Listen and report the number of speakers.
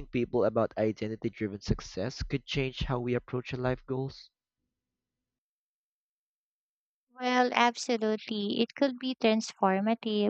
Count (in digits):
2